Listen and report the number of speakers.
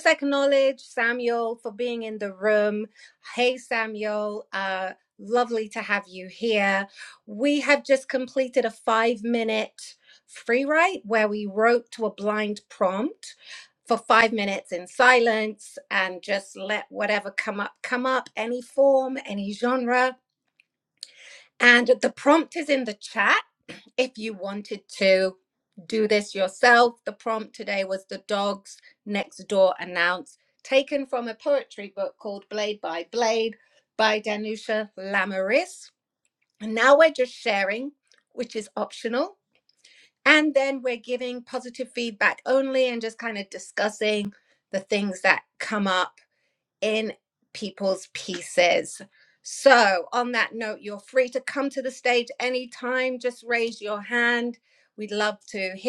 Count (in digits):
1